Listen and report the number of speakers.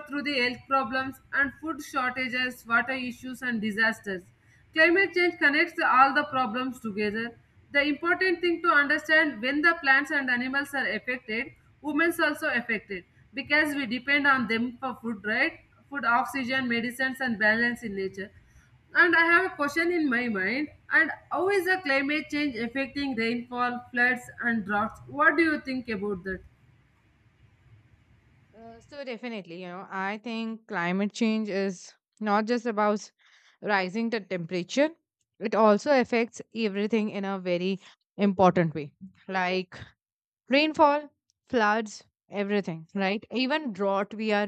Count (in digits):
2